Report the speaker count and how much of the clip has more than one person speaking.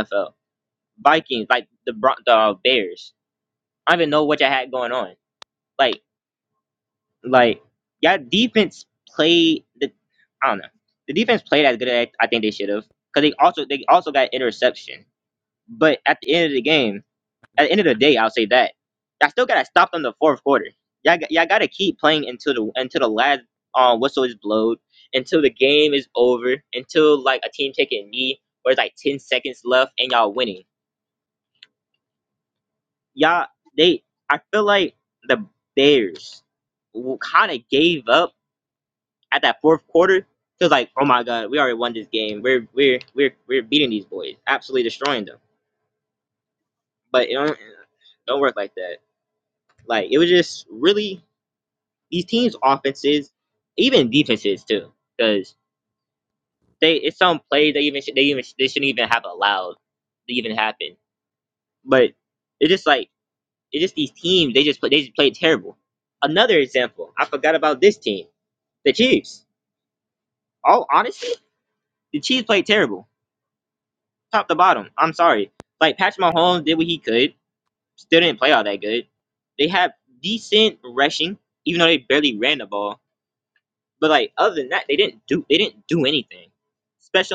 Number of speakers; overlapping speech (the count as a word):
one, no overlap